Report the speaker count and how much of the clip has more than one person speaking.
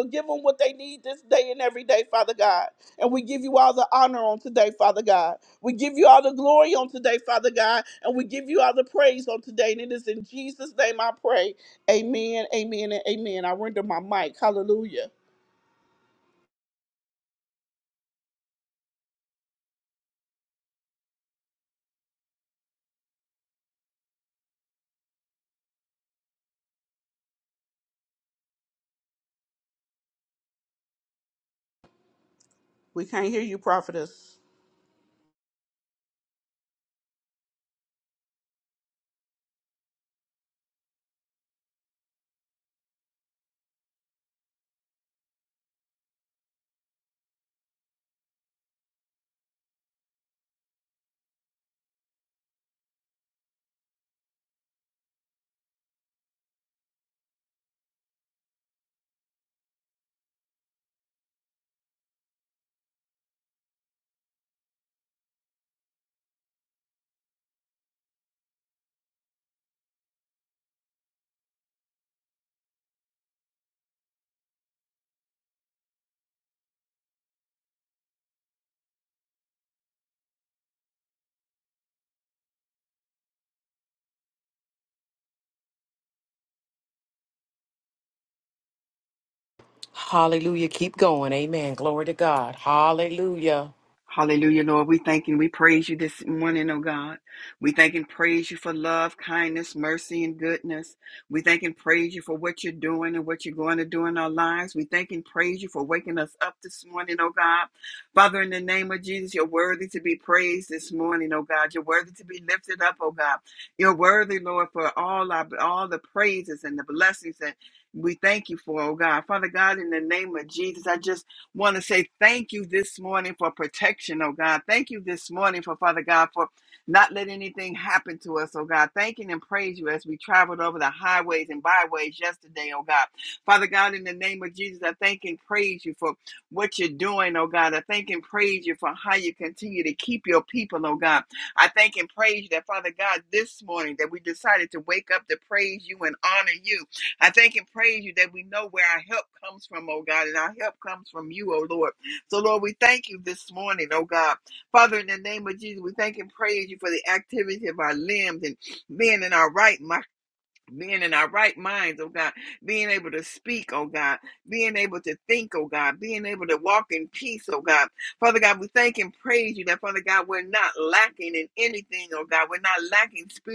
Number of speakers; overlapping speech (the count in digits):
3, no overlap